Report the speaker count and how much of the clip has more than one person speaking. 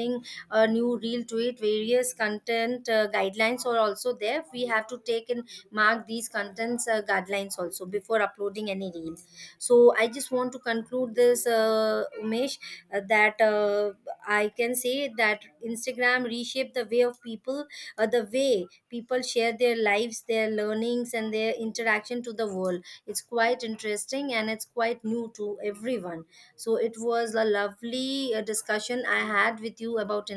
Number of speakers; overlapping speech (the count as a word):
one, no overlap